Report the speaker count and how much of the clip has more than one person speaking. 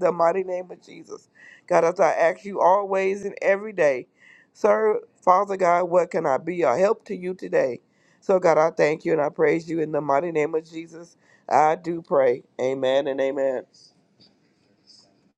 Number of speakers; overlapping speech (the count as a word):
one, no overlap